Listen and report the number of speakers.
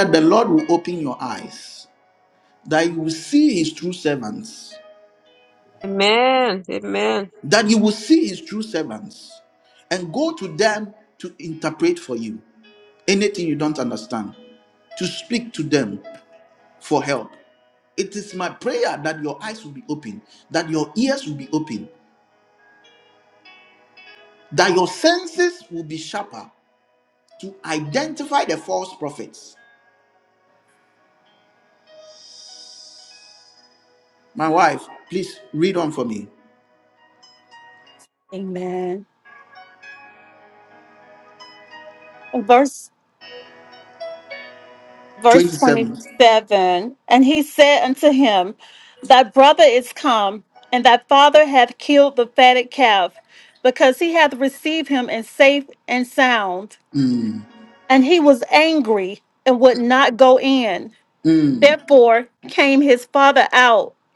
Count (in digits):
3